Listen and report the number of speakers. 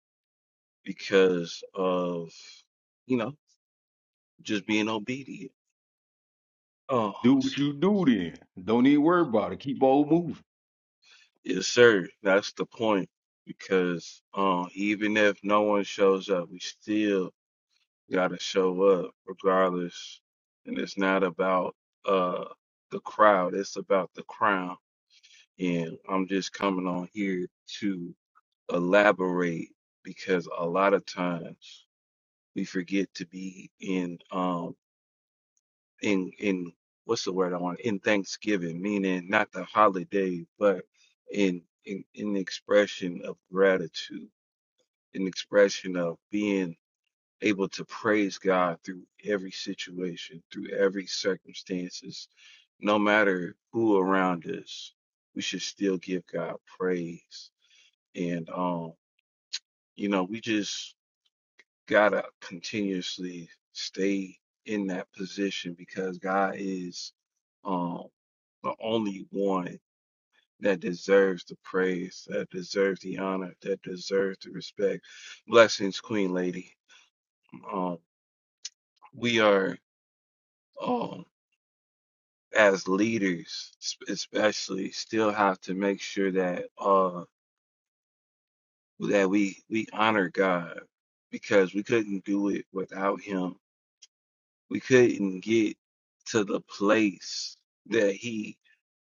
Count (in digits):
2